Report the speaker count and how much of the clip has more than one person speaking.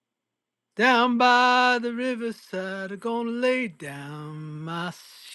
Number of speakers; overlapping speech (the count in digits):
1, no overlap